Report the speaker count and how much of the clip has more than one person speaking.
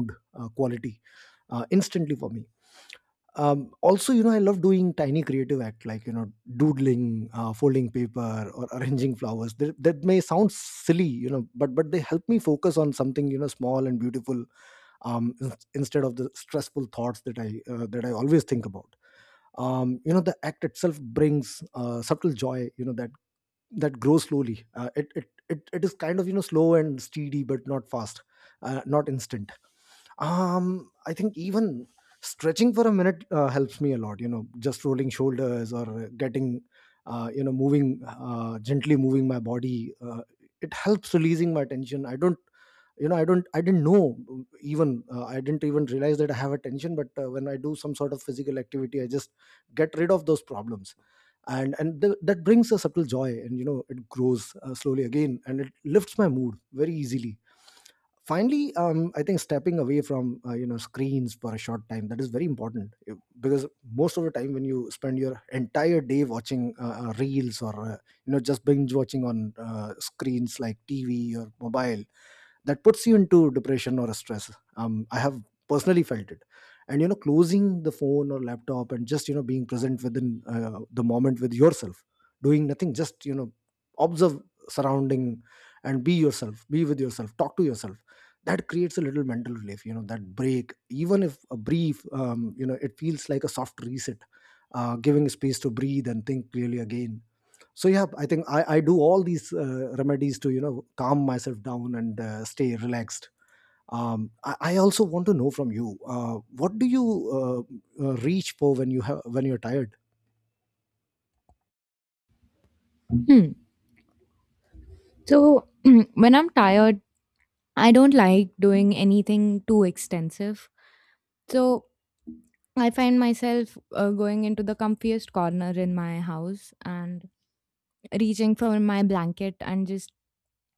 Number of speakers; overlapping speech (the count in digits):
2, no overlap